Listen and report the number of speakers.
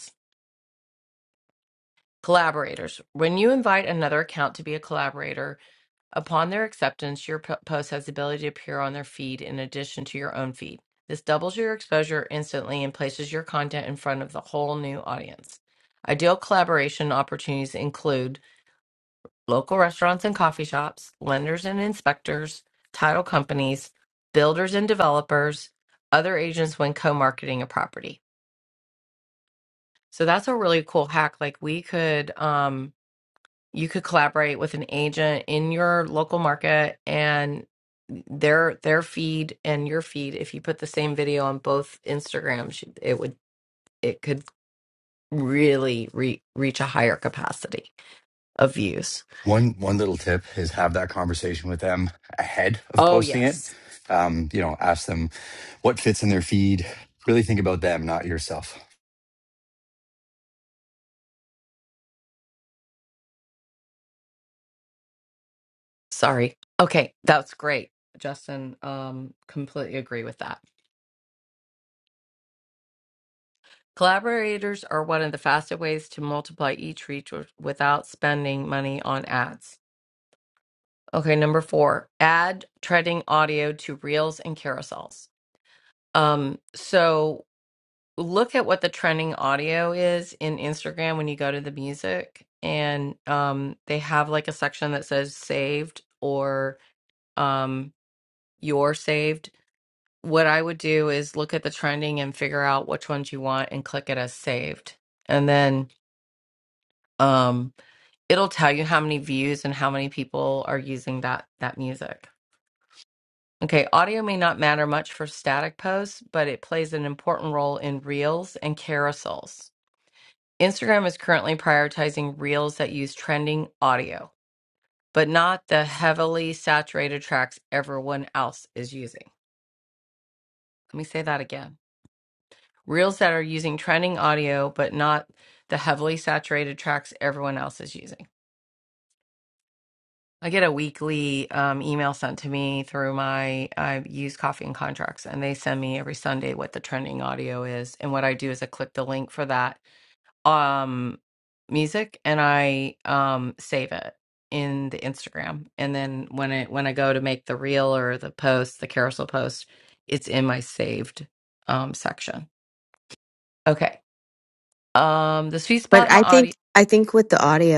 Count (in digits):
3